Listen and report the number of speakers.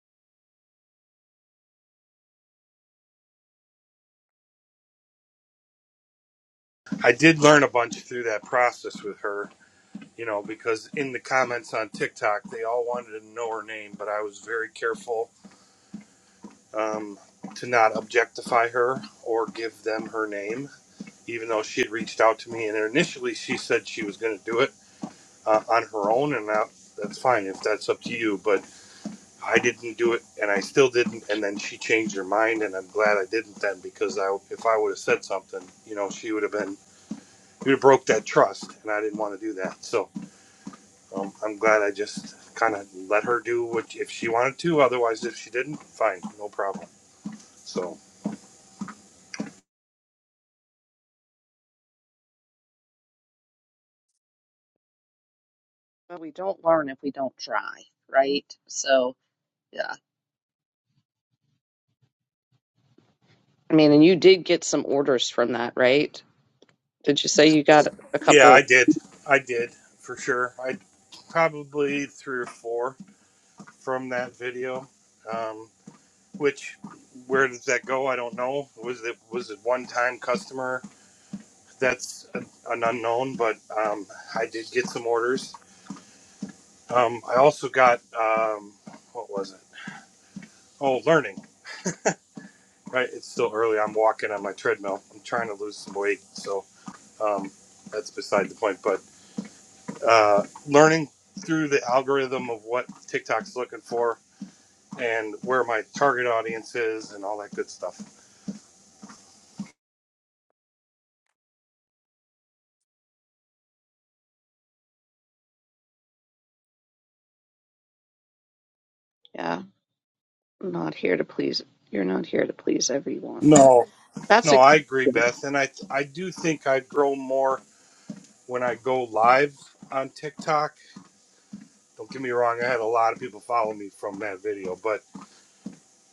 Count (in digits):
2